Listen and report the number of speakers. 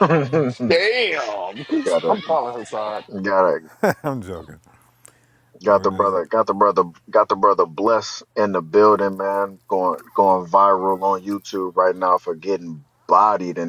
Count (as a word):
three